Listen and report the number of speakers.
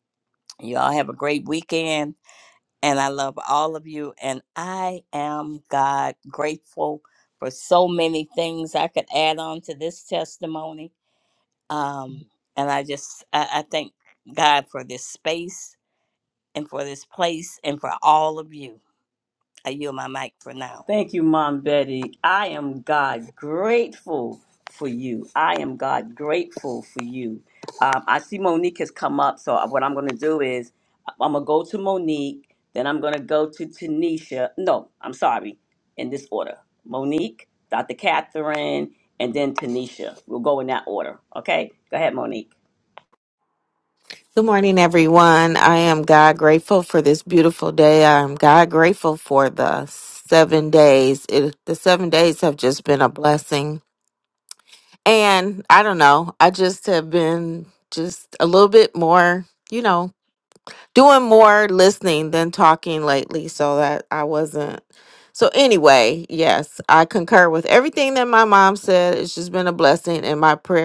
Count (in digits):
3